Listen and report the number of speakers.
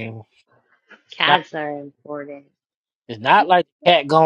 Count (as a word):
two